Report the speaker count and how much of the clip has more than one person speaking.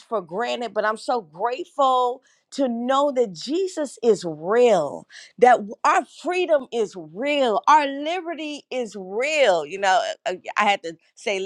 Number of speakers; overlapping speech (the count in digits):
1, no overlap